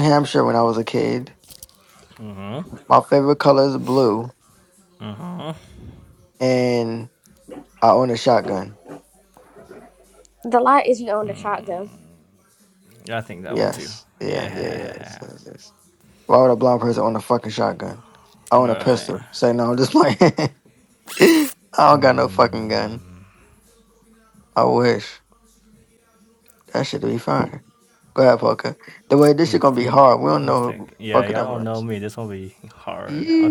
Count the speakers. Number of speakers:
3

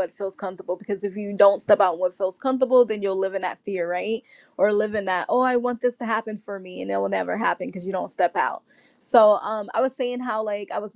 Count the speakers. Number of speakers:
1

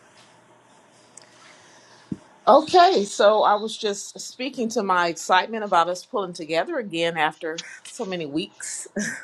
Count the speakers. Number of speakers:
1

